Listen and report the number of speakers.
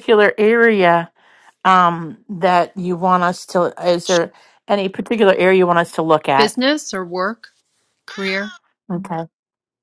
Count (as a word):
two